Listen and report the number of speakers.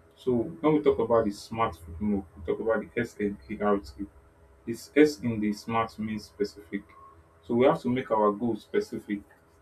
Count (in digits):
1